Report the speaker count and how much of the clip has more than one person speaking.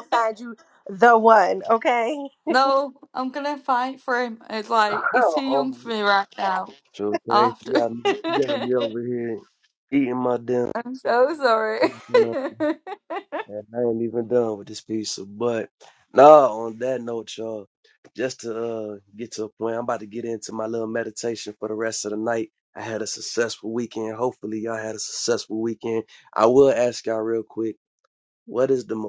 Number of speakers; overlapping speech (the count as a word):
three, about 3%